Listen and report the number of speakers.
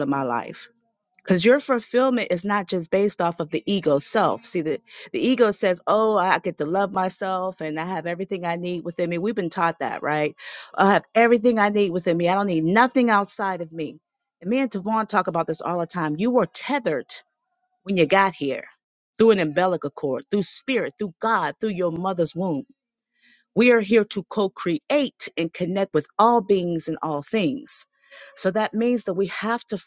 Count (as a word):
one